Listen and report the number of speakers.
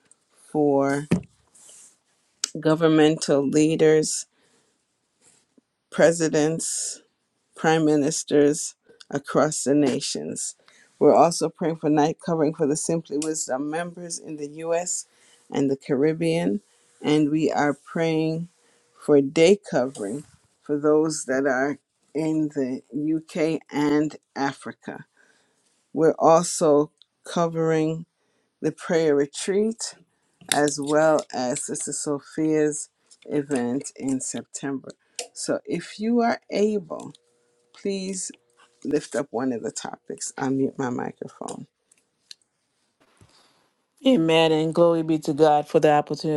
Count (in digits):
2